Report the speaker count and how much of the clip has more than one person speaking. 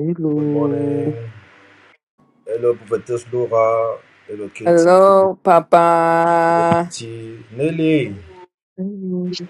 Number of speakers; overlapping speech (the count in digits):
3, about 8%